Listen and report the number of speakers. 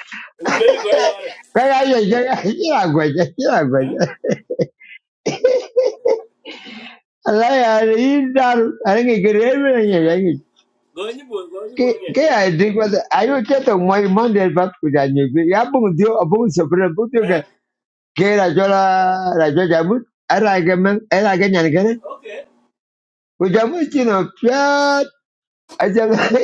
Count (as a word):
two